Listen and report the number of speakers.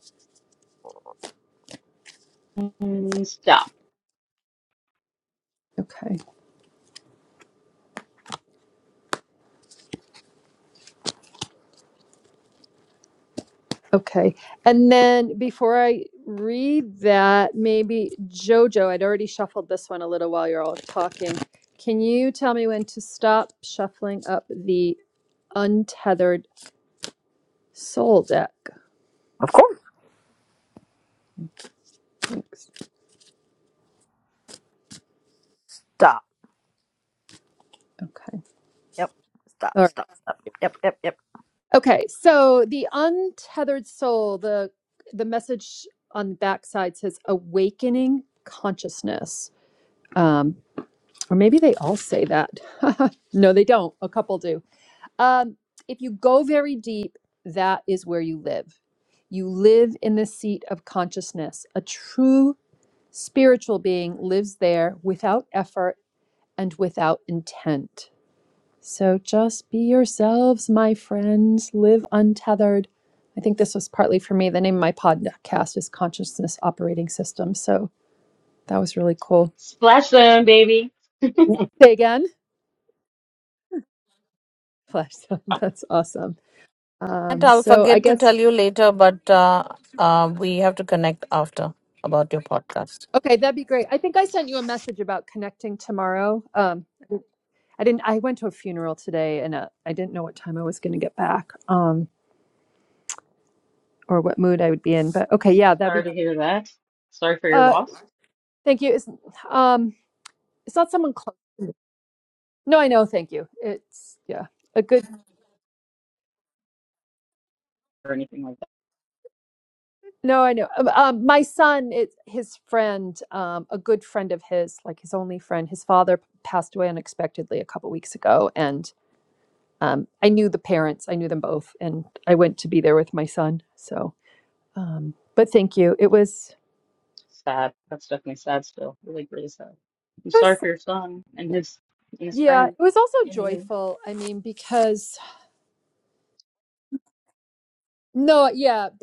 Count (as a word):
four